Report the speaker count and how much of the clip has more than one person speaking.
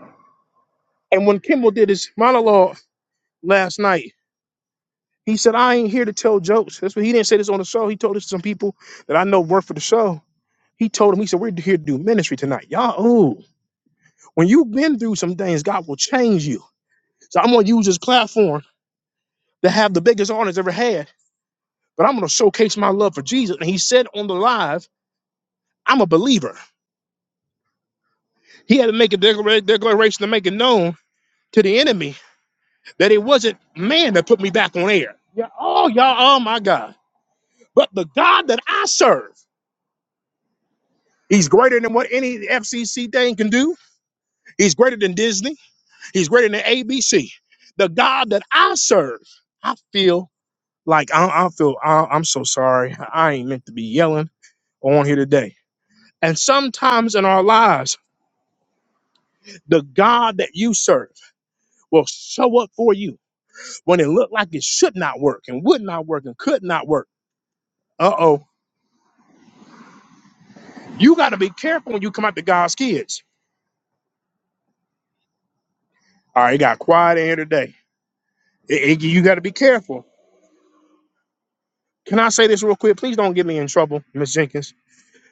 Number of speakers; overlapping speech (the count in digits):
1, no overlap